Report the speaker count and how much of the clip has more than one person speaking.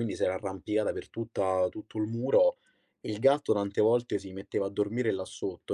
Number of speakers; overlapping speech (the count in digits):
1, no overlap